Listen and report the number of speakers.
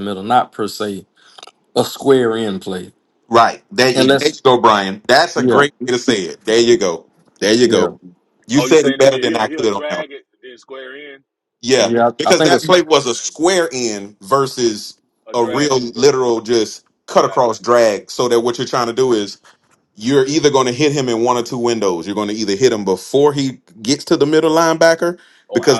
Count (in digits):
3